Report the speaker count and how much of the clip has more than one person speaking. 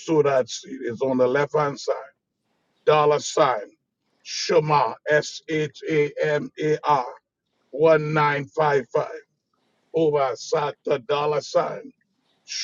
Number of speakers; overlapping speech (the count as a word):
one, no overlap